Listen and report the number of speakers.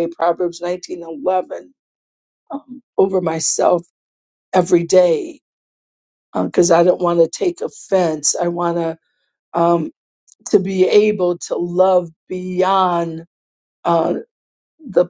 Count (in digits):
1